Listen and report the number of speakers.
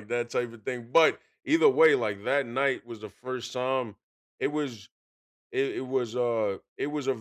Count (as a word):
one